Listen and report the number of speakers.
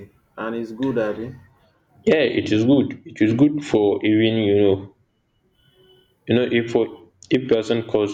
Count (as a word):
two